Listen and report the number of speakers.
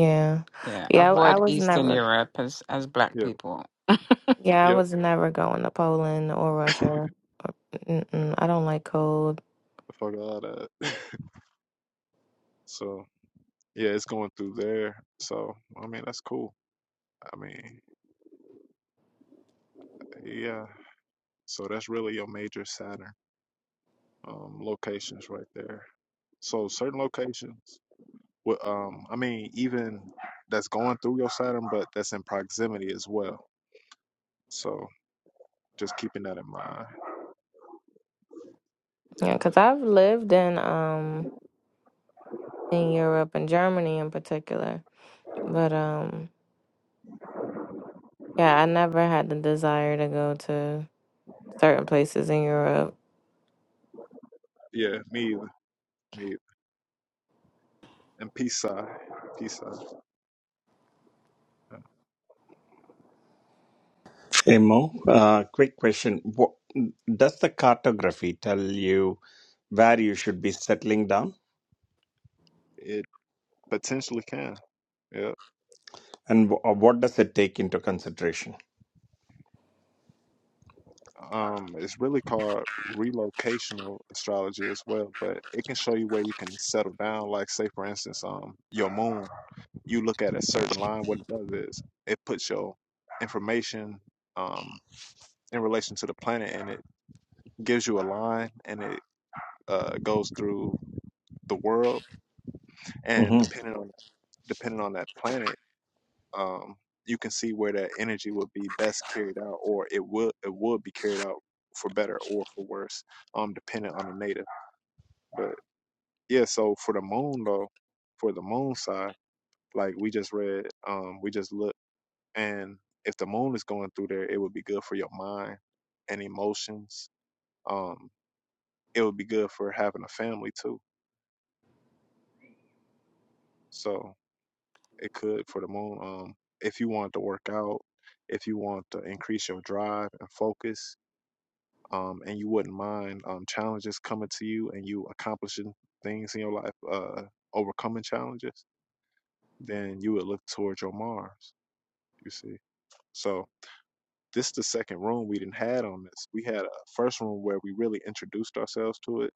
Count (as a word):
four